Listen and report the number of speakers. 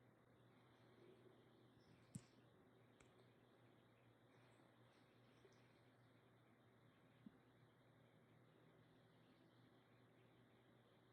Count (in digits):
0